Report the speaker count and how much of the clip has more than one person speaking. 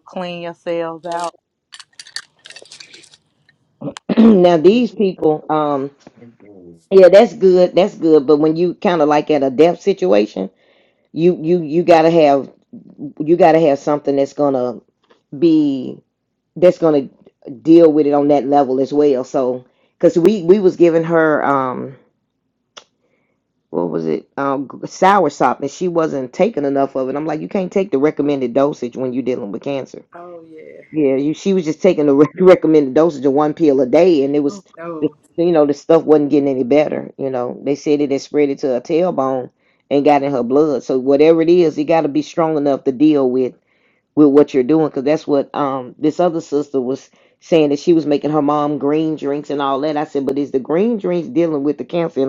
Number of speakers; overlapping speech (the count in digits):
3, under 1%